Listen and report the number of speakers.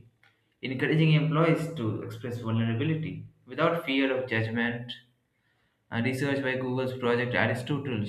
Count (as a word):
one